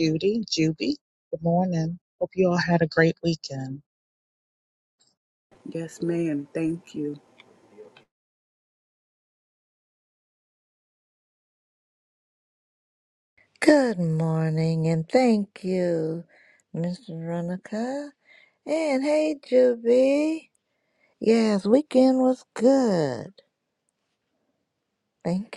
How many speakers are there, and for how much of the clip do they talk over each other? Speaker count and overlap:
three, no overlap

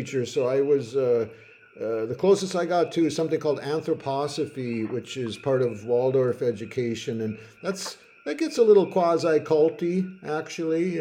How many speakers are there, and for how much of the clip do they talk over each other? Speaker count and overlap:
one, no overlap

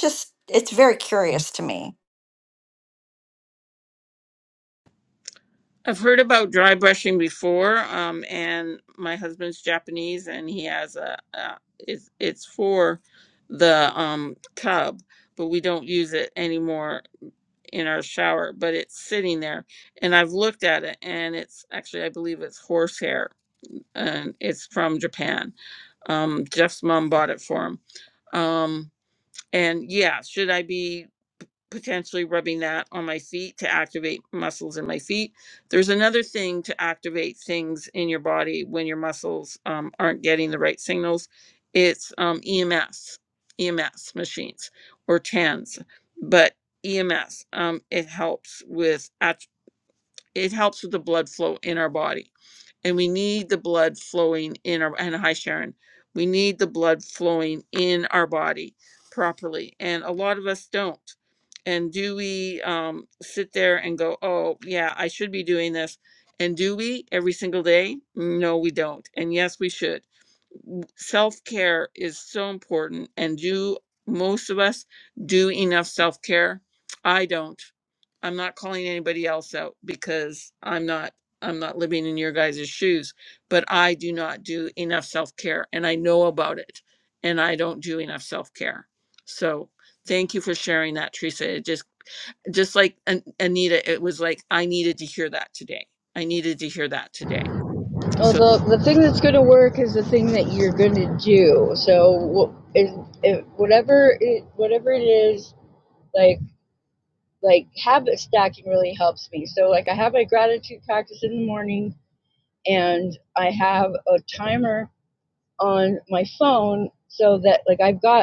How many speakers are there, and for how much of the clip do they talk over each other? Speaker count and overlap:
three, under 1%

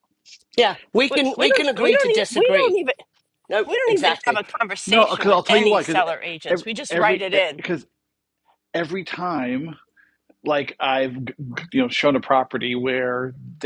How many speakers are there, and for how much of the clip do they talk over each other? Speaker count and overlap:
three, about 31%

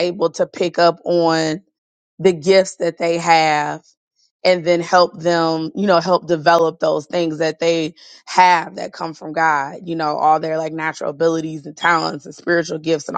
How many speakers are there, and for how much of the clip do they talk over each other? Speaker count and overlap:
one, no overlap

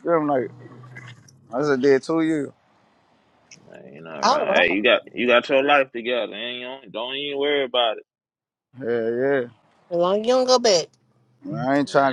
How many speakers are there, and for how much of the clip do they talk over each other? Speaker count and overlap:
three, about 6%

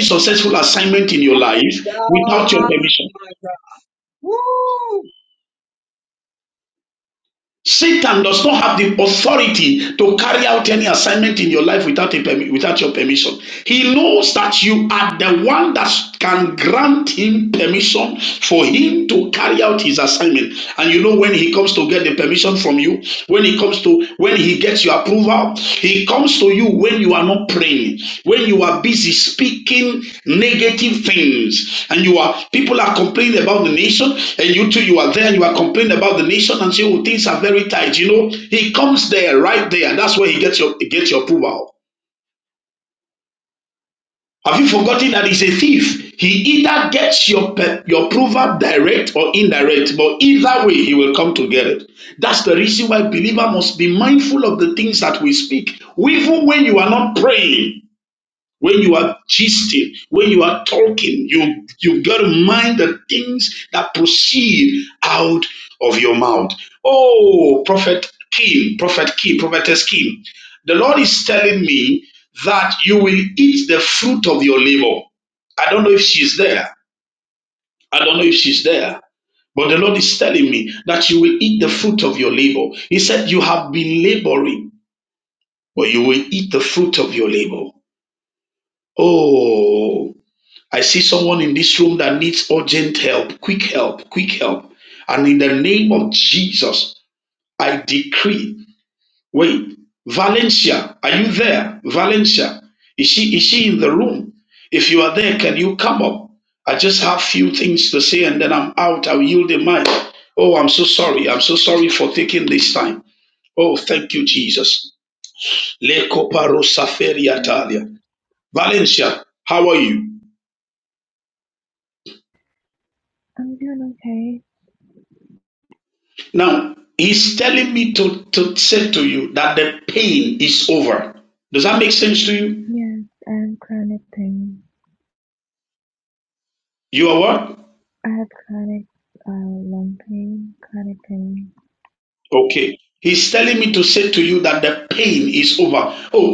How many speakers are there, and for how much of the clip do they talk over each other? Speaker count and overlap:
three, about 1%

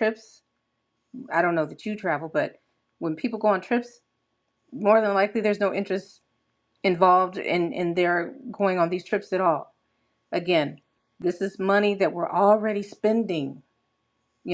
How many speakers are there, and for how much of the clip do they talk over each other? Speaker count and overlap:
one, no overlap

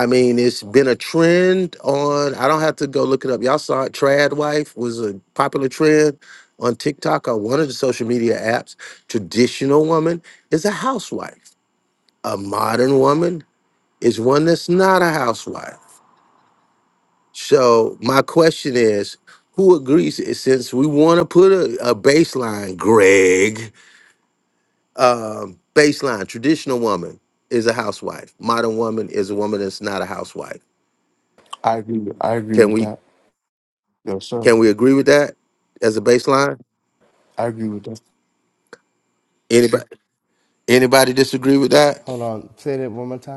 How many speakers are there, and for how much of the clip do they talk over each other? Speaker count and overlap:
three, about 1%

